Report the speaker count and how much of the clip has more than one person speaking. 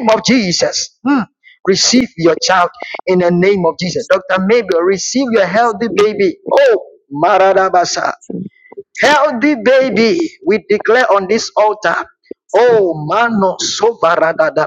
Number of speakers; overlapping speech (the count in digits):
1, no overlap